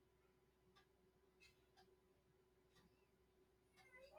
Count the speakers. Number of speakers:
0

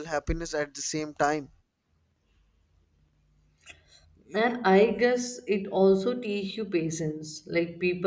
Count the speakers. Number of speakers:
2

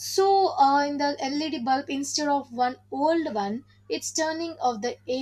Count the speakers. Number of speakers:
1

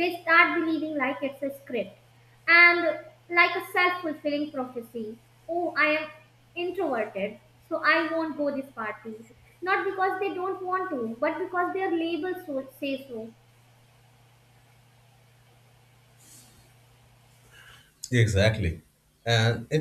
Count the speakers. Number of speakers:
2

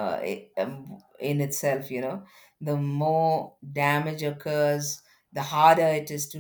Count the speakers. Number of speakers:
1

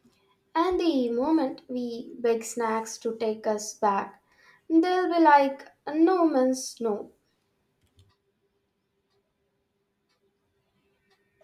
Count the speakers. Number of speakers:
1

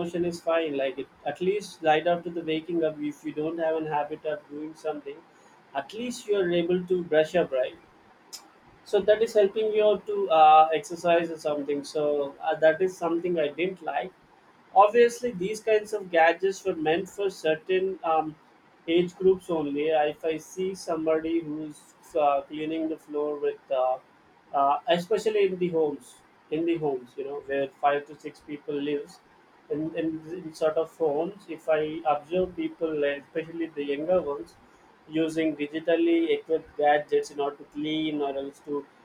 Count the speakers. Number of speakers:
1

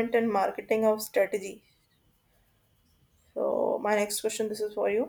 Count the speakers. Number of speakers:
1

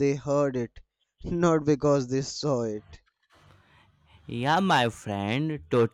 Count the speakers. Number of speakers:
2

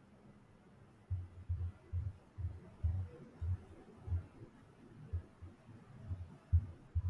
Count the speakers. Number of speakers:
0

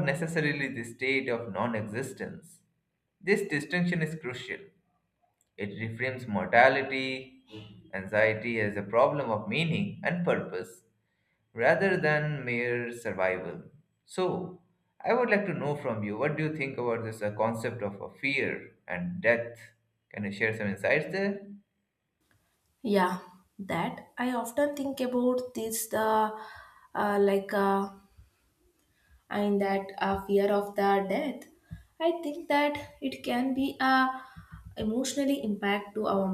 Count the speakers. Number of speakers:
2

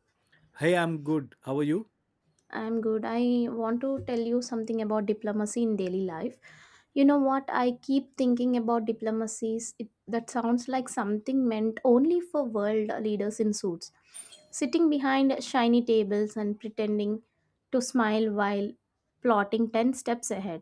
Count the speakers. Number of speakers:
2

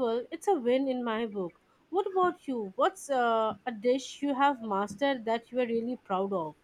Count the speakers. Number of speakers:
1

